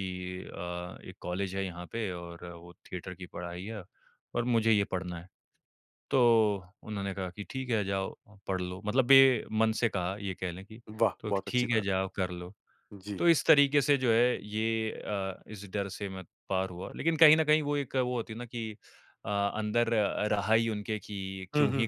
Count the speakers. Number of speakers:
two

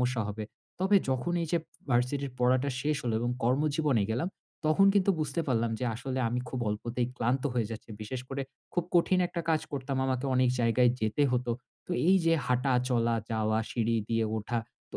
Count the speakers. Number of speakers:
one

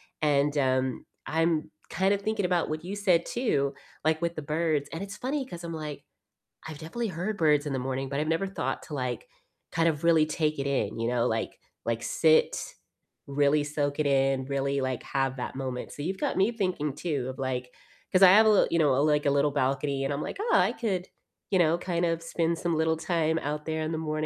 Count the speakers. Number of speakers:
one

